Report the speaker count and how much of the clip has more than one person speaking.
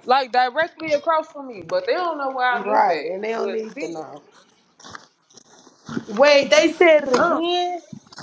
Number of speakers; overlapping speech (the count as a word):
two, about 20%